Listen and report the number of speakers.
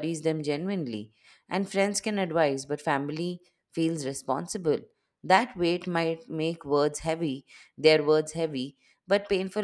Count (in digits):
1